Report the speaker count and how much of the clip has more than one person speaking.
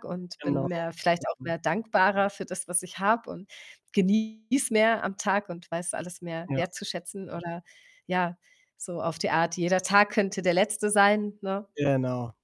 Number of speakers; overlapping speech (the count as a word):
two, about 4%